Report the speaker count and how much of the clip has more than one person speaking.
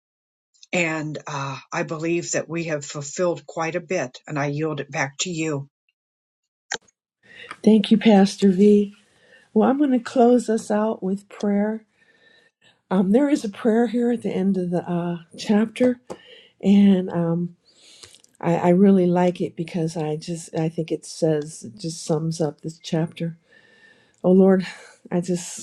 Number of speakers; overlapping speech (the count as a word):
two, no overlap